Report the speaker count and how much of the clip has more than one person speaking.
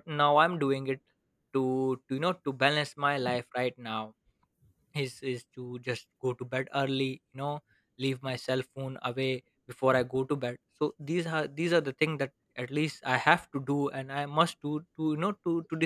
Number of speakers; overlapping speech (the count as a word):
one, no overlap